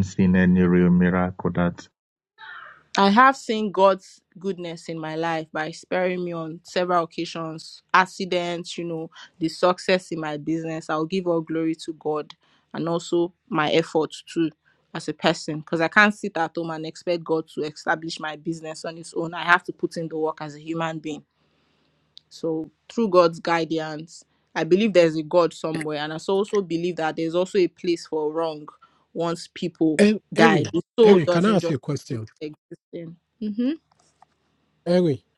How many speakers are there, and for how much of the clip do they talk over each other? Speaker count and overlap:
3, about 3%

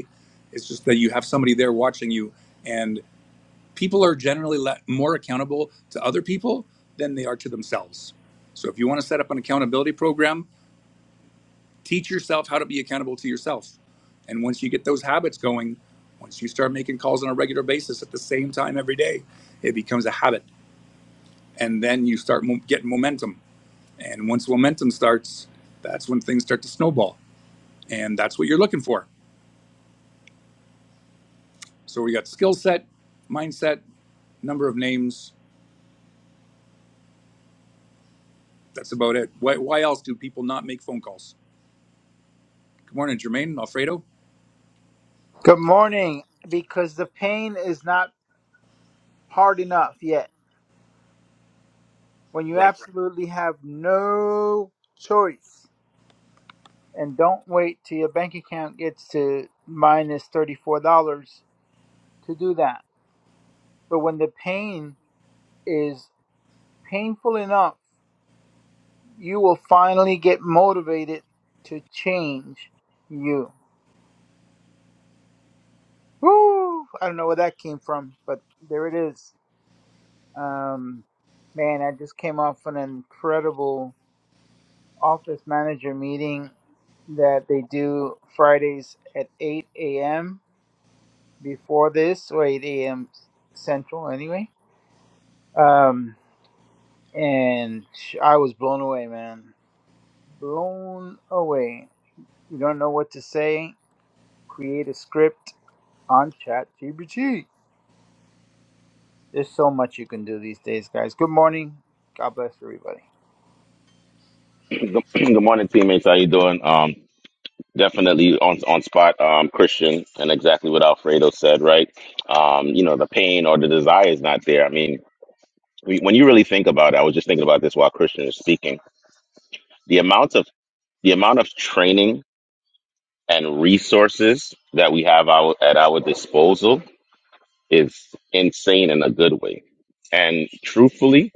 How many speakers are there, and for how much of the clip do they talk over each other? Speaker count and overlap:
3, under 1%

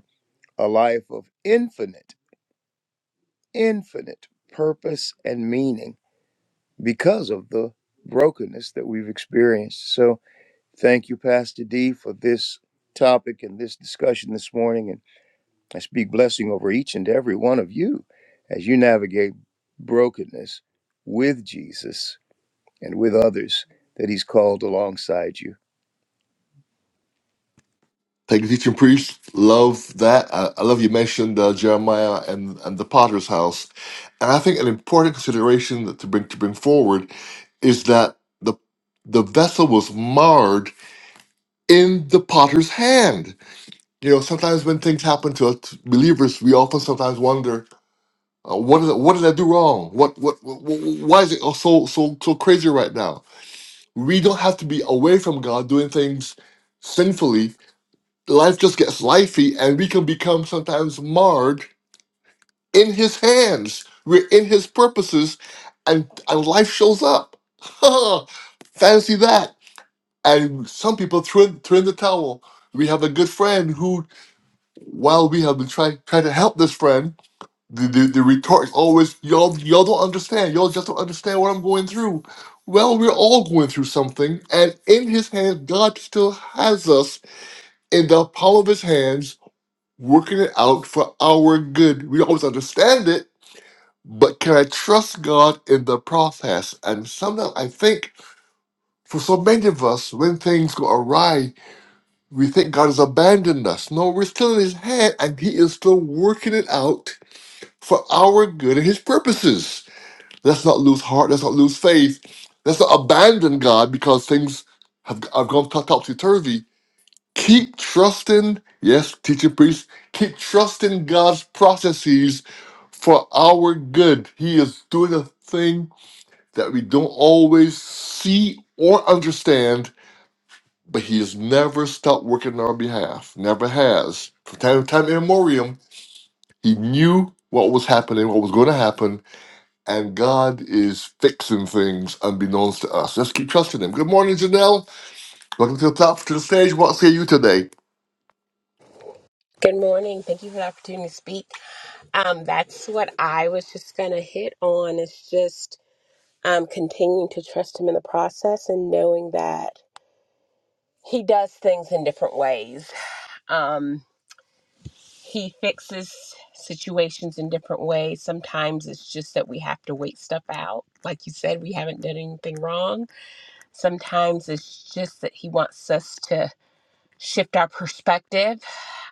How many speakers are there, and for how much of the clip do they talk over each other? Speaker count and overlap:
3, no overlap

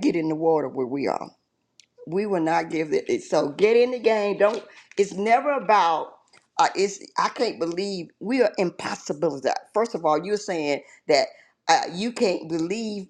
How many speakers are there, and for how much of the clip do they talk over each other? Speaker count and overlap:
1, no overlap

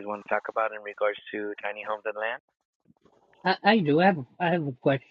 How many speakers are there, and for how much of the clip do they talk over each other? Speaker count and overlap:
2, no overlap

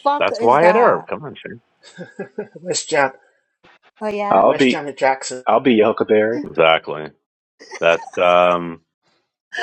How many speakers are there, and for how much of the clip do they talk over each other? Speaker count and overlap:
4, about 14%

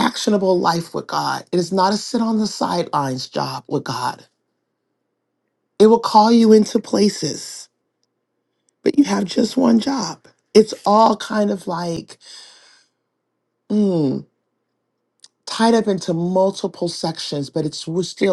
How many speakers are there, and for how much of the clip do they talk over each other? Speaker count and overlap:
1, no overlap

